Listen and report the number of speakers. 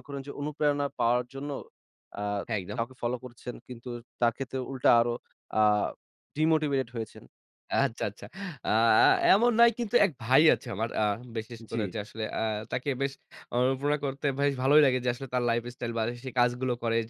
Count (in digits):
2